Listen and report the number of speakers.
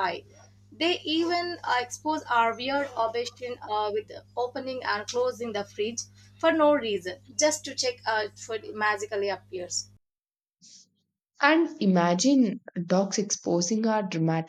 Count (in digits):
2